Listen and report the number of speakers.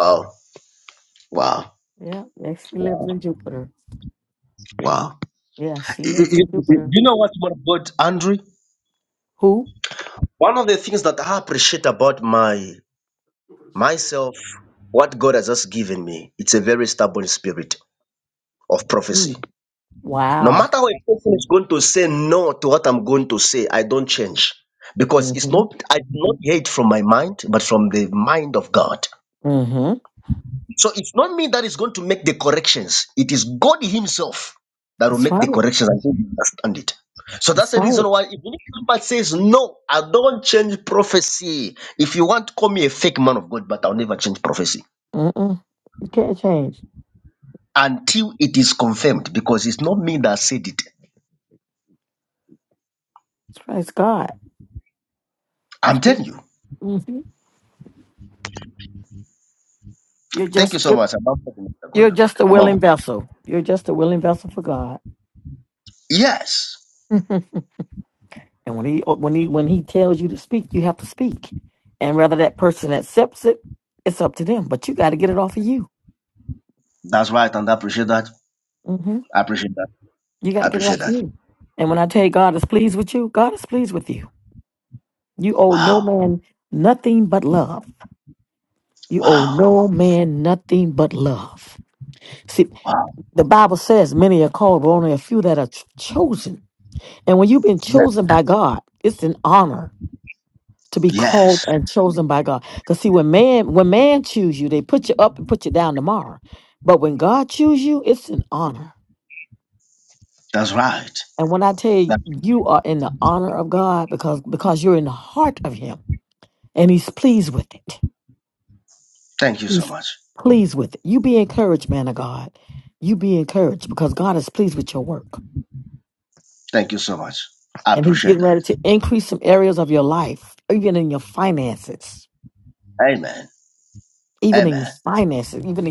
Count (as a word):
two